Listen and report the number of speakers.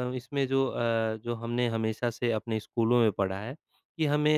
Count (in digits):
1